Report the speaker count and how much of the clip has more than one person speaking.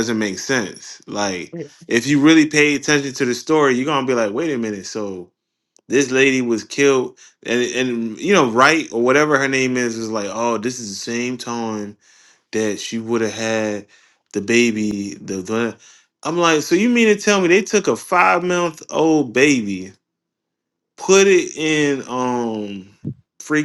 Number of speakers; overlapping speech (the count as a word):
one, no overlap